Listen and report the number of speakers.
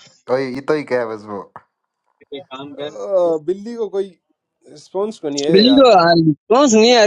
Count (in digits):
3